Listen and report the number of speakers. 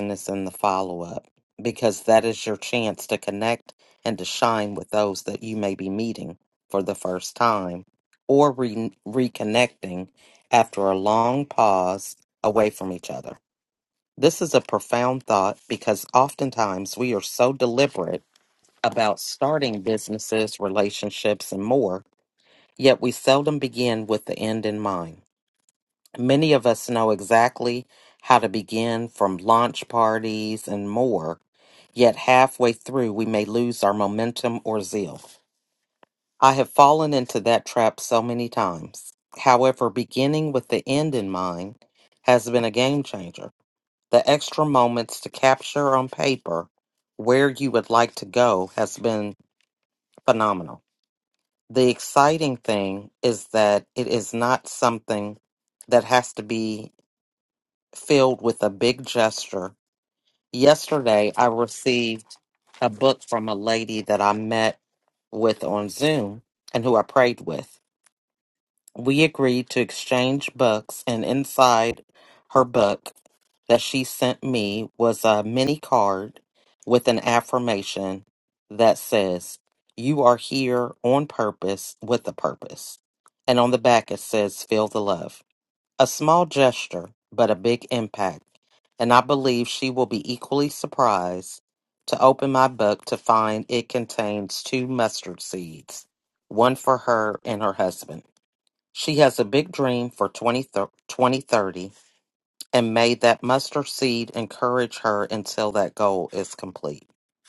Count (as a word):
one